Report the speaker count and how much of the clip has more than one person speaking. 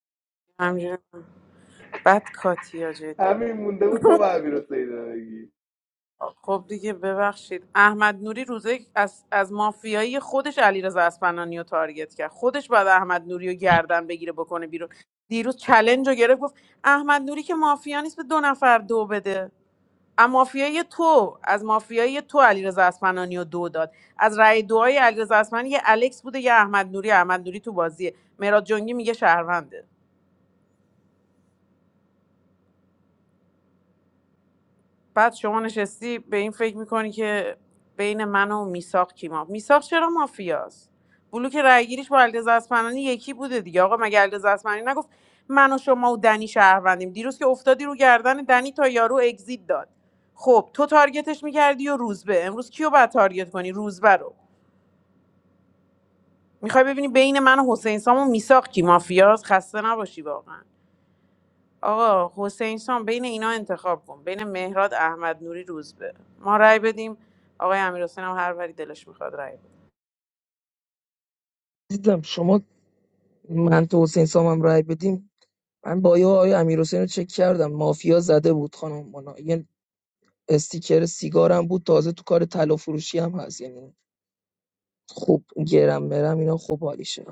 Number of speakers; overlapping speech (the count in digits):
3, no overlap